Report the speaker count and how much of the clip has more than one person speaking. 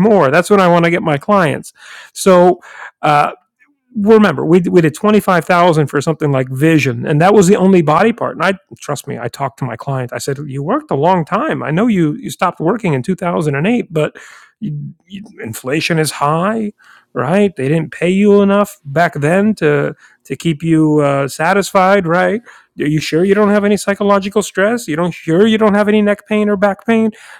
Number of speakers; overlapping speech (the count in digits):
1, no overlap